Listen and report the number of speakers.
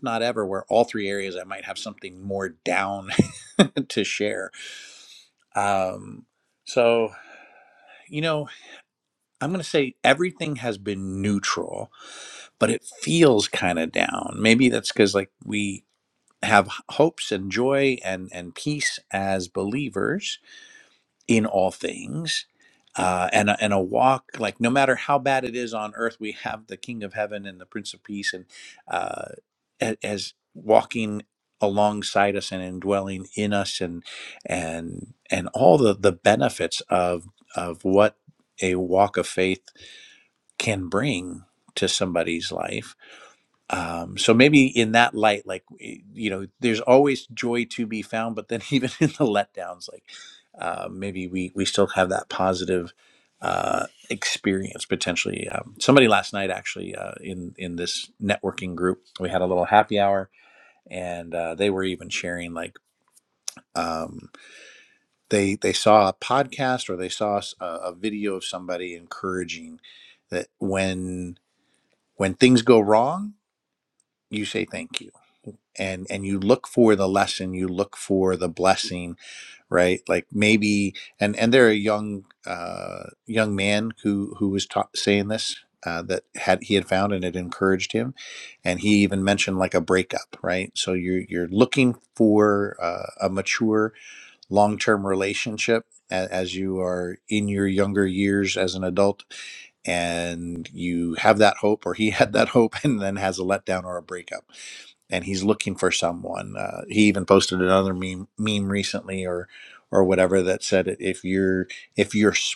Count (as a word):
one